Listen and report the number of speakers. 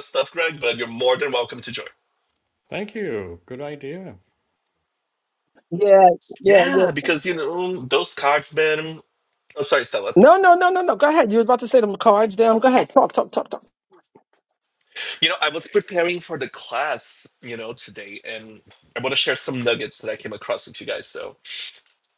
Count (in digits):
3